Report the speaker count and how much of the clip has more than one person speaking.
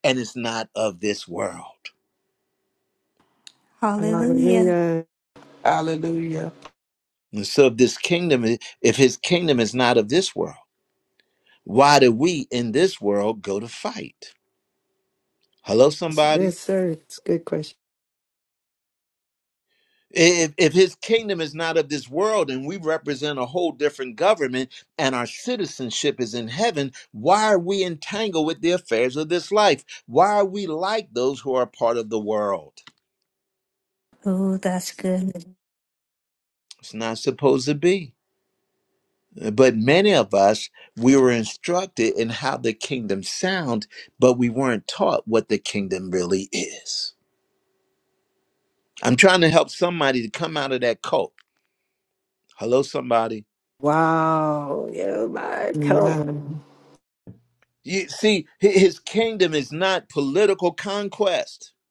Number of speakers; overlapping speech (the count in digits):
4, about 3%